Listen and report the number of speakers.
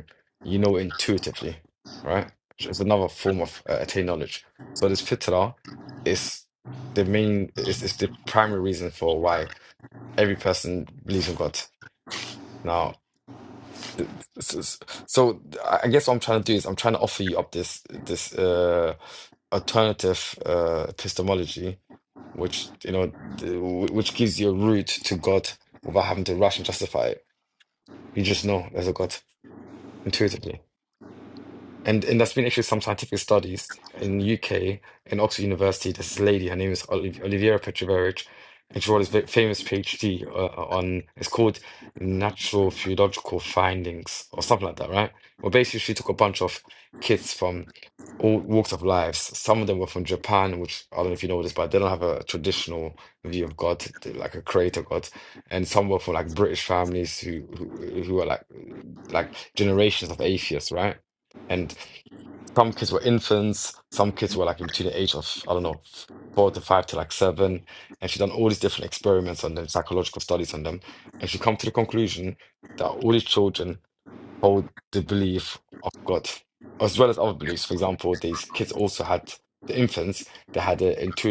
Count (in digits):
1